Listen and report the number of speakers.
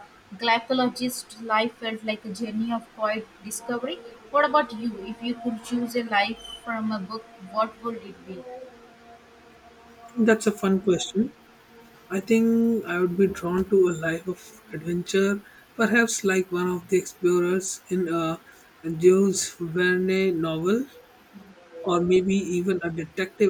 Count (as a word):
two